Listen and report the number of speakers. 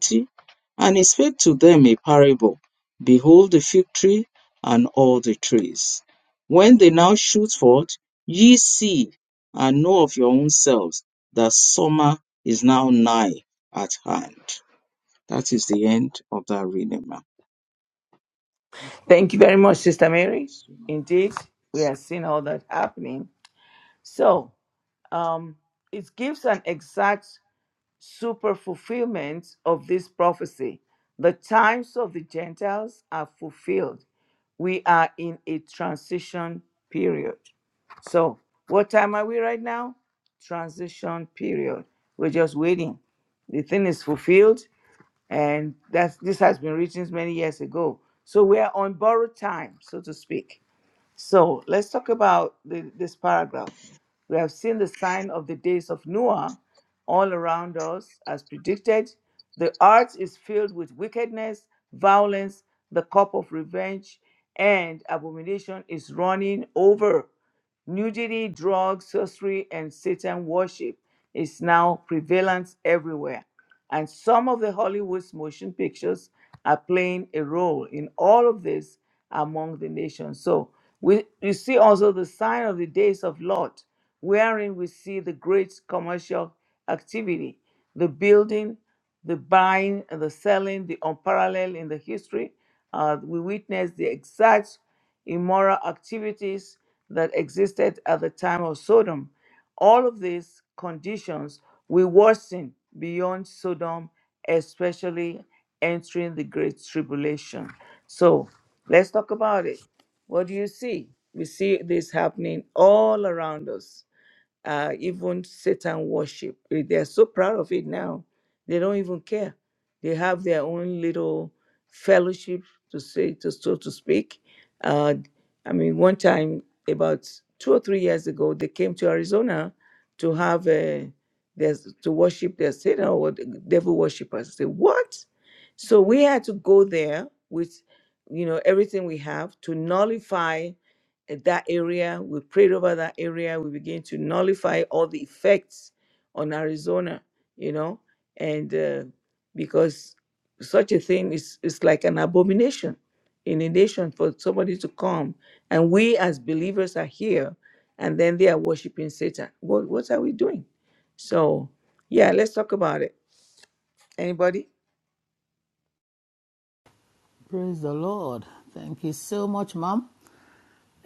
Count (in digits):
3